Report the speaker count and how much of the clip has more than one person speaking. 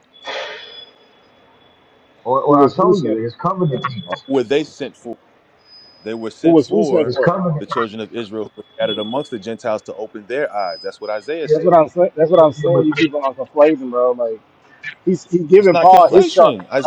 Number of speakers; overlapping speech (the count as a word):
three, about 24%